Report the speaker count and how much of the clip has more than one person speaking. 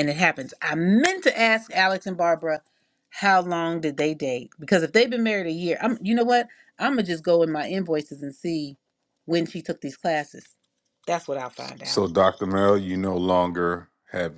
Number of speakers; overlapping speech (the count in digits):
2, about 1%